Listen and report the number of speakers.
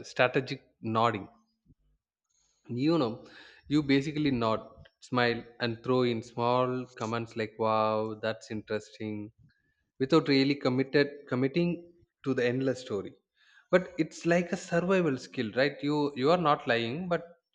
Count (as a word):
one